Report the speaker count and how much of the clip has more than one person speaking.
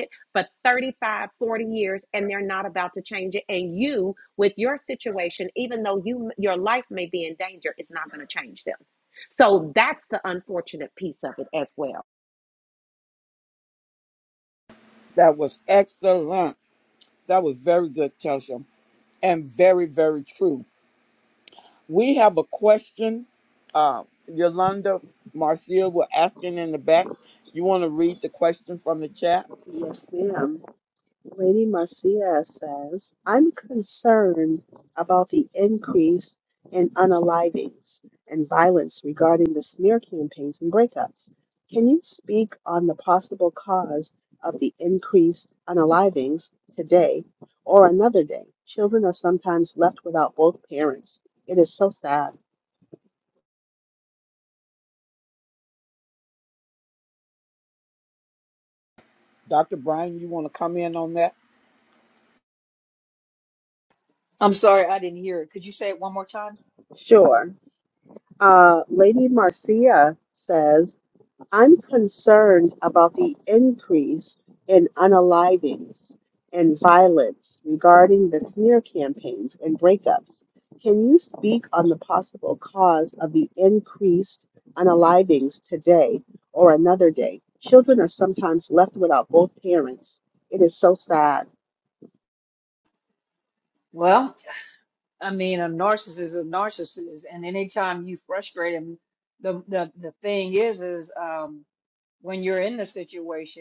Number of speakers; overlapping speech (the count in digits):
4, no overlap